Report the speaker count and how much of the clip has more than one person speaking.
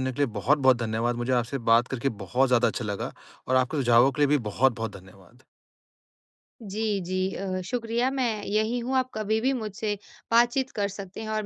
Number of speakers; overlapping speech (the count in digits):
2, no overlap